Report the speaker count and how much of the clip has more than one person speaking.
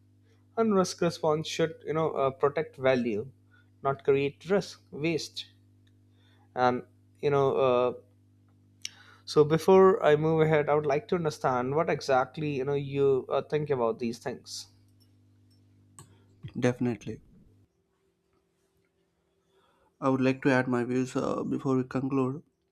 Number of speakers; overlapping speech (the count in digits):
2, no overlap